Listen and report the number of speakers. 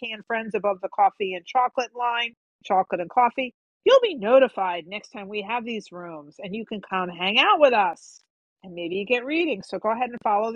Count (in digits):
1